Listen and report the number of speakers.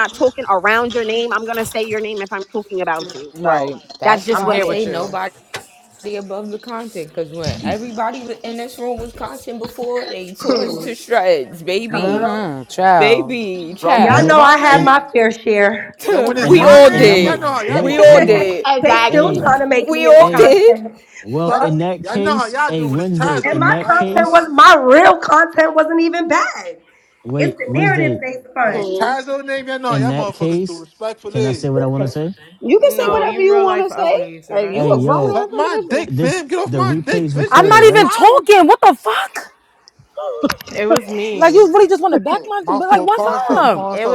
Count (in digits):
7